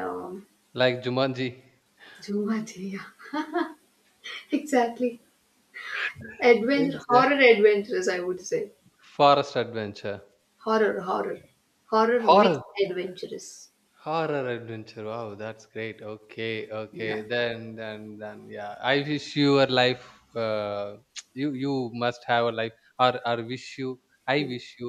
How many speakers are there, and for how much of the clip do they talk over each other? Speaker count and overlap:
2, about 7%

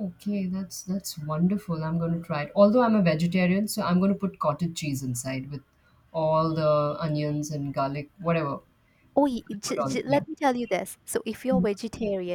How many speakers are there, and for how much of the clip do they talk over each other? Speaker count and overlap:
2, about 6%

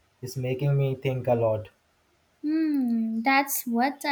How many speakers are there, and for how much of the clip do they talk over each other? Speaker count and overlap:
2, no overlap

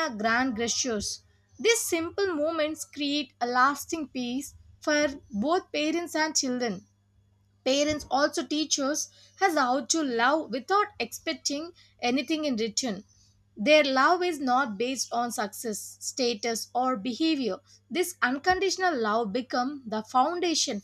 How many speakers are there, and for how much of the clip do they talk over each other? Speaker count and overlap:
1, no overlap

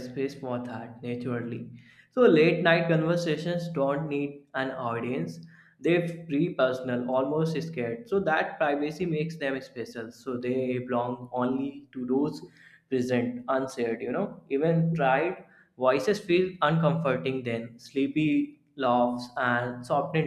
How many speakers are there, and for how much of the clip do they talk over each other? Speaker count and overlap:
1, no overlap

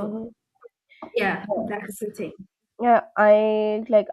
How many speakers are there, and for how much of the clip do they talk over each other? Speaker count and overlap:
2, about 11%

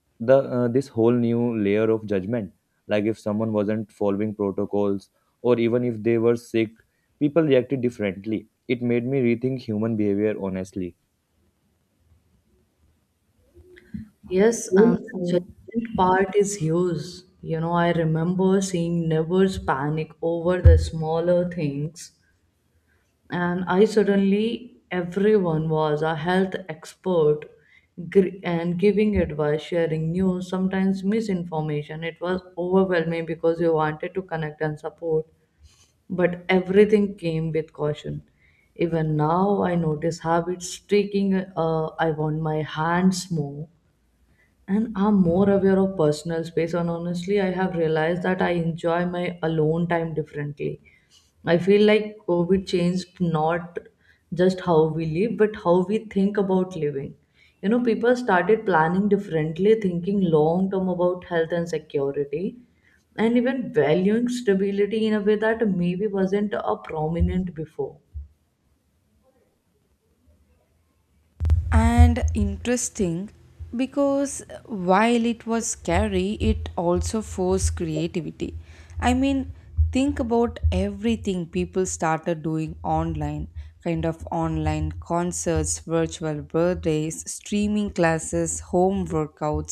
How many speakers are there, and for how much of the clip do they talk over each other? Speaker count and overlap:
3, no overlap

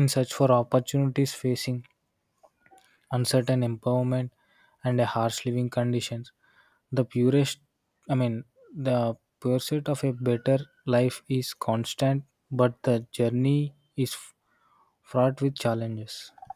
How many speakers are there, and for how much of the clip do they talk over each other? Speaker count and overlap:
1, no overlap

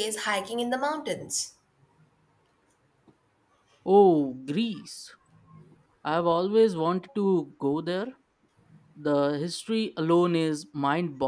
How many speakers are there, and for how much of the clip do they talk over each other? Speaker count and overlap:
2, no overlap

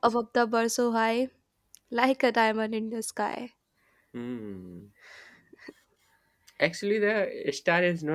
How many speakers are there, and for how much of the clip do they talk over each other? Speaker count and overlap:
2, under 1%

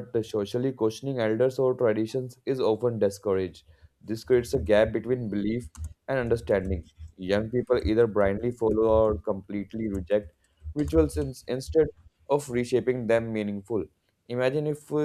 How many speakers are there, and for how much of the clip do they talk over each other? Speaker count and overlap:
1, no overlap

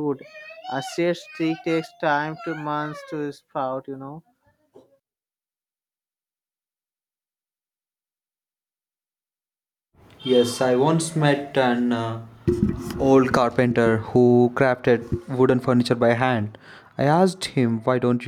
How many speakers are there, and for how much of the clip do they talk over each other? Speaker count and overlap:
2, no overlap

